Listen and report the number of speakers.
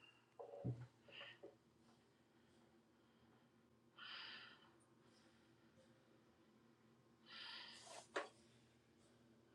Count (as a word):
zero